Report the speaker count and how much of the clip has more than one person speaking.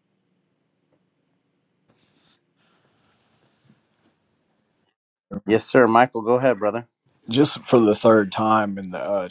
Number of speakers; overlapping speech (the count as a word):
two, no overlap